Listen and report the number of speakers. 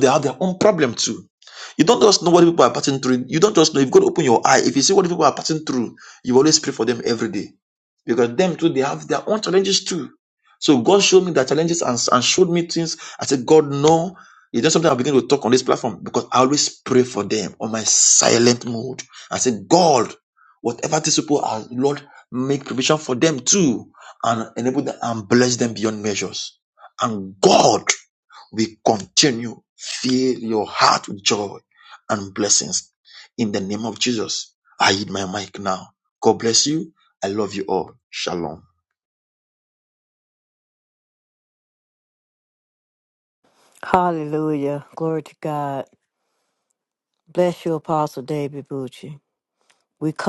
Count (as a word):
two